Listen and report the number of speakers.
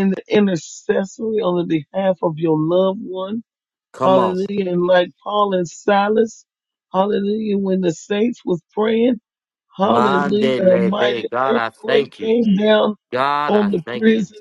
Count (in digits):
2